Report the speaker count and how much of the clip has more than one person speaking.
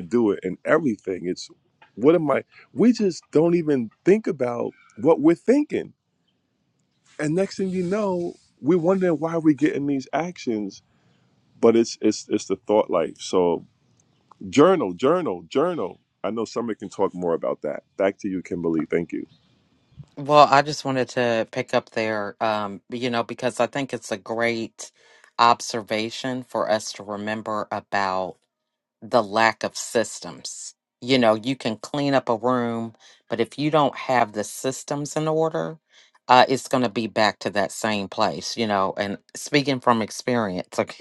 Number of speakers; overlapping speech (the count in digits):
2, no overlap